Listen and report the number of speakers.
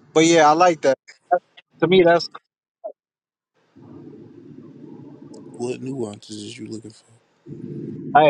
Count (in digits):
2